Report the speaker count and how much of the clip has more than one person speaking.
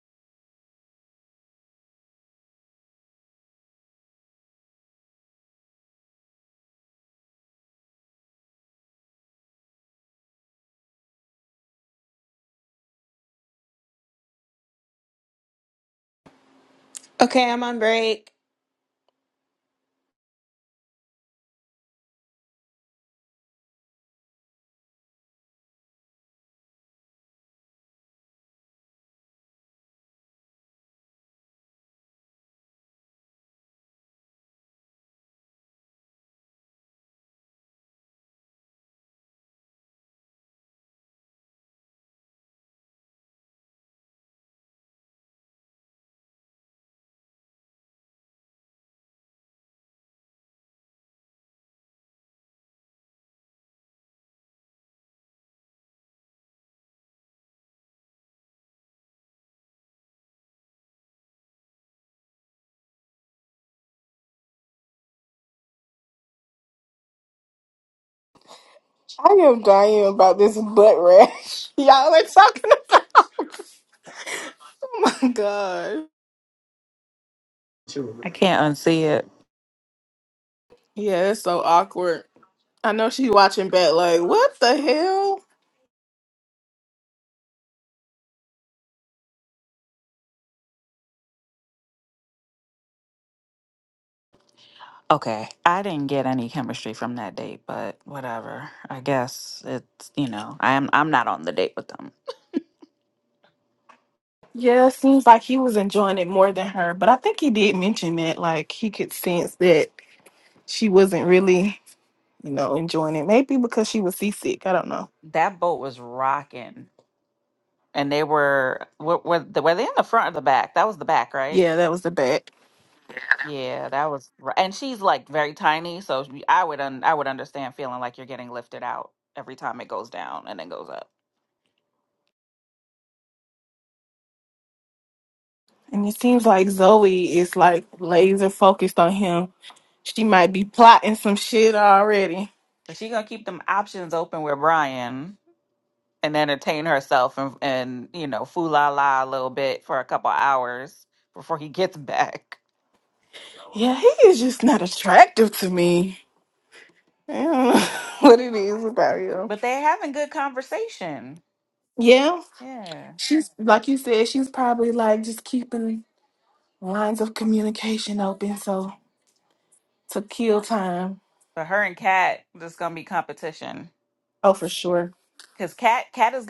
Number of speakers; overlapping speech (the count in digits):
3, under 1%